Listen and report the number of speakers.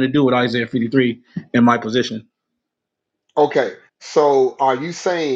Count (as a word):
two